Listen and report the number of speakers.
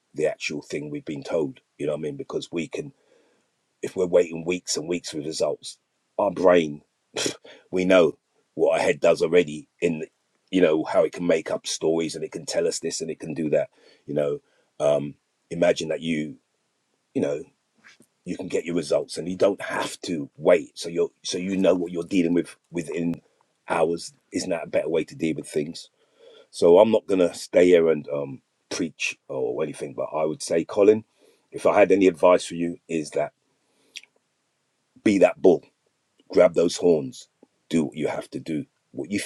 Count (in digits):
1